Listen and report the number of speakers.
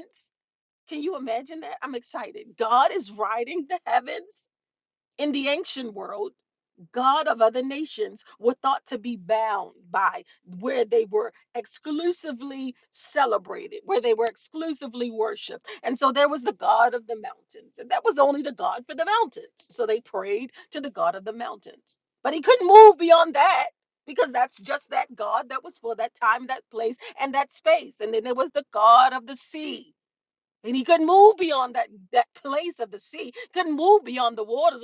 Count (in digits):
1